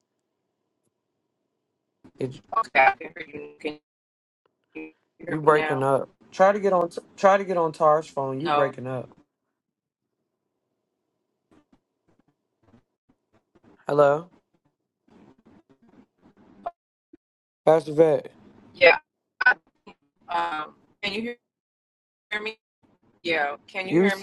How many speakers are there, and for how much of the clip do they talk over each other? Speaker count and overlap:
2, about 5%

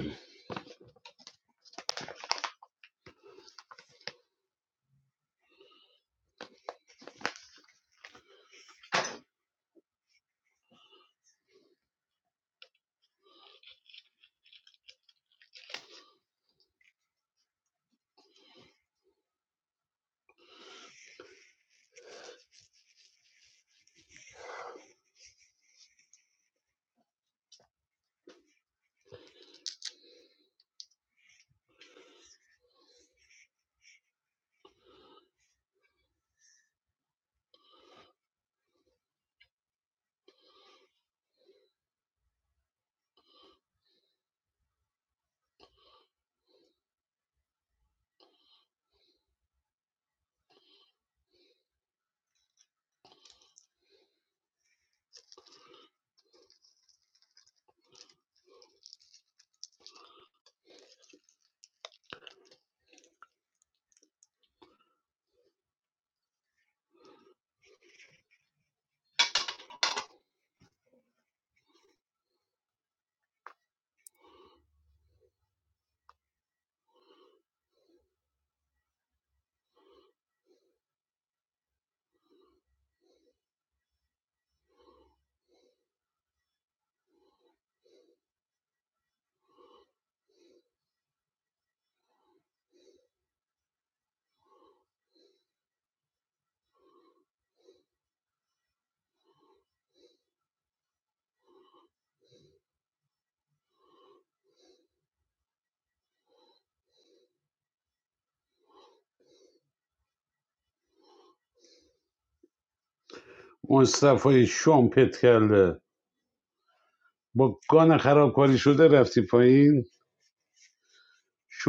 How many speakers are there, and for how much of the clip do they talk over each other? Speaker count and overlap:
1, no overlap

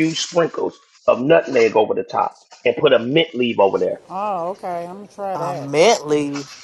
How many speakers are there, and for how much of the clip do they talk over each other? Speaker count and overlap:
3, about 6%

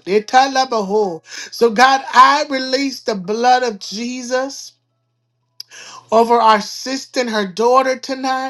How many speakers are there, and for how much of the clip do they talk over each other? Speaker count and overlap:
1, no overlap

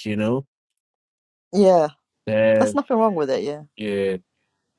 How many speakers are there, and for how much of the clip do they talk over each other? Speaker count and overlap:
2, about 3%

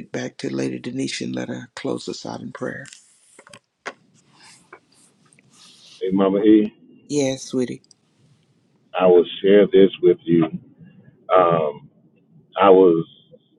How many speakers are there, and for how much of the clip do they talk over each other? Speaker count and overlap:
2, no overlap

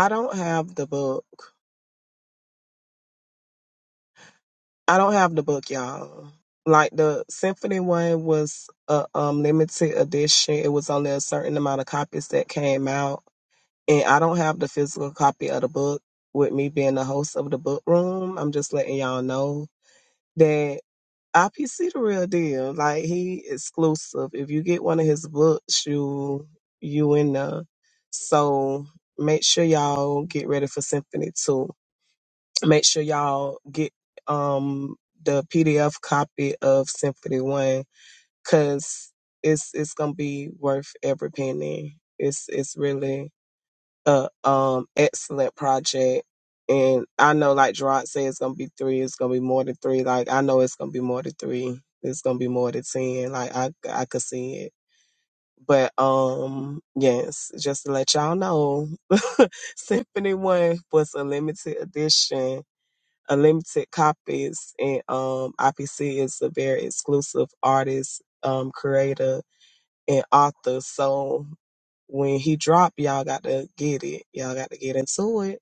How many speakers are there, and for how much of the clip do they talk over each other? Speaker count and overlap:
1, no overlap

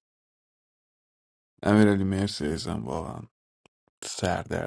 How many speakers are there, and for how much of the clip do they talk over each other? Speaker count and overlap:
1, no overlap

